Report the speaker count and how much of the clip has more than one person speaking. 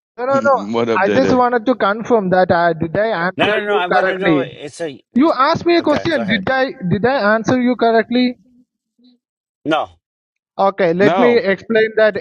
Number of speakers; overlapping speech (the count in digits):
3, about 24%